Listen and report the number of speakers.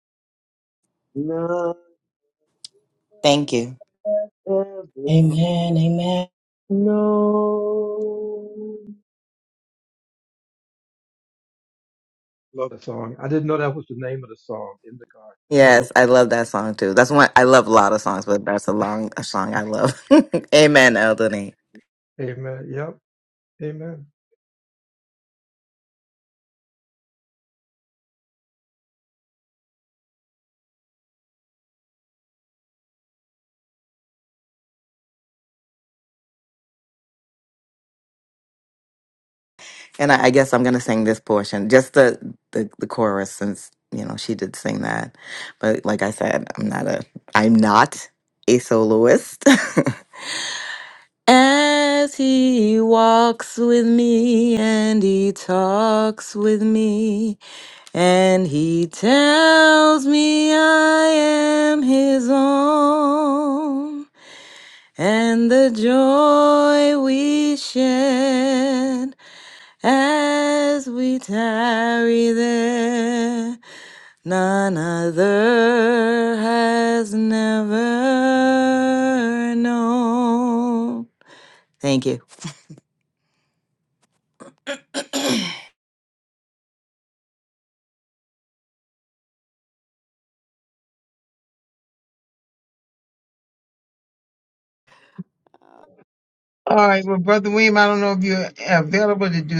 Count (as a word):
four